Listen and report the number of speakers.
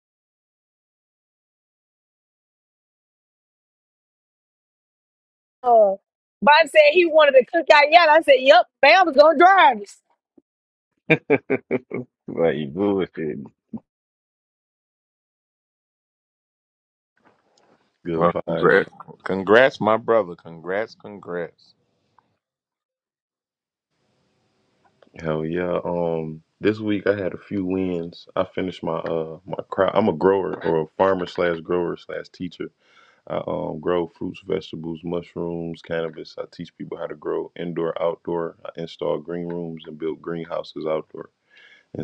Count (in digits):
4